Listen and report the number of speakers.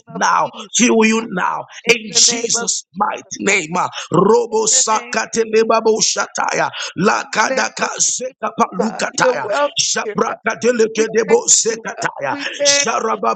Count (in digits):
2